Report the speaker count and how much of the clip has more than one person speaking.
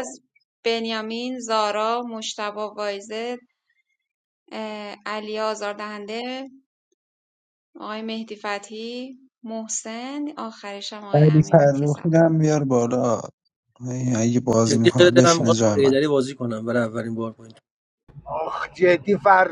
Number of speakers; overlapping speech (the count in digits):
4, about 11%